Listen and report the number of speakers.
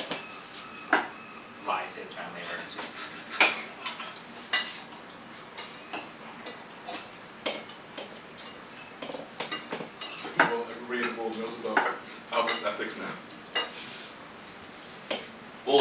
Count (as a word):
two